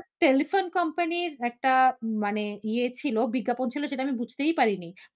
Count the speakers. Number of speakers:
one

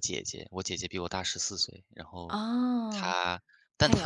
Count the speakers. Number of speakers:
two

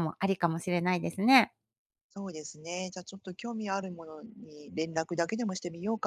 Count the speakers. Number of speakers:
two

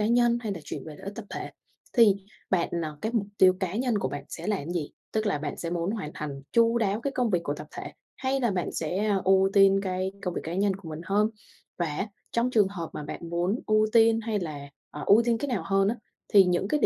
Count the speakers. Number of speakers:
one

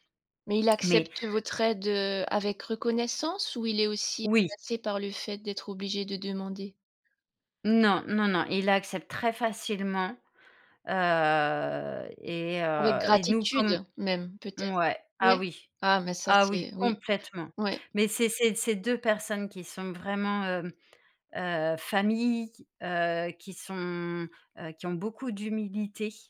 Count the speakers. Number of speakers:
two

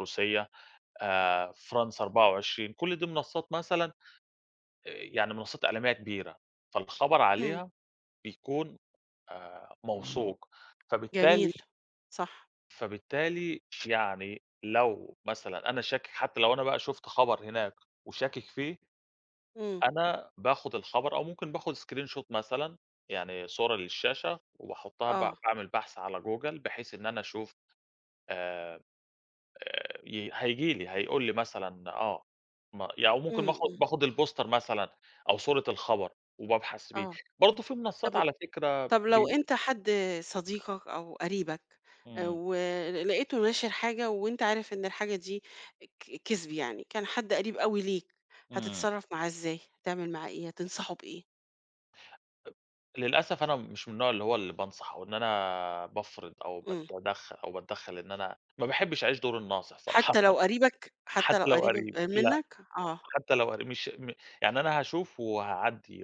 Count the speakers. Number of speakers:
two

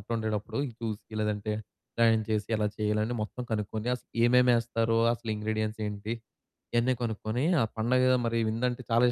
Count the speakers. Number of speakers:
one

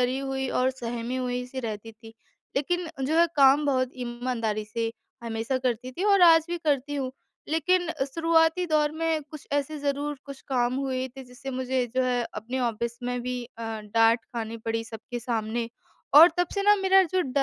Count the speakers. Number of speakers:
one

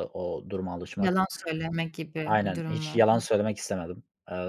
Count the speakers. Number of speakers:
two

